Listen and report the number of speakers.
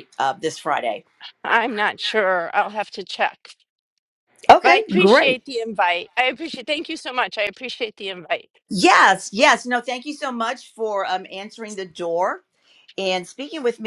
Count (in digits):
2